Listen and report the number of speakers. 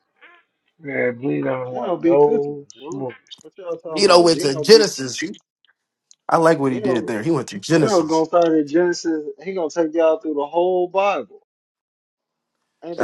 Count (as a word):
three